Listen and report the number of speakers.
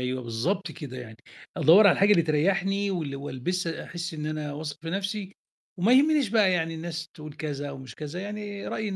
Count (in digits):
1